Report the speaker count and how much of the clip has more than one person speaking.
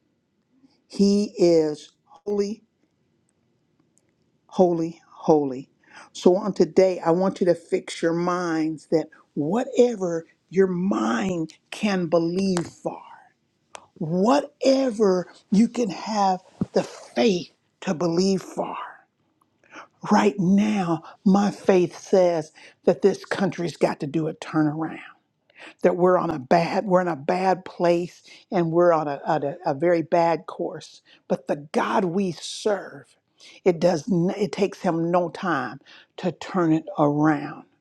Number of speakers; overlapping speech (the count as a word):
one, no overlap